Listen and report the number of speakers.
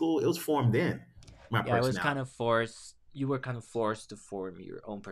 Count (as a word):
two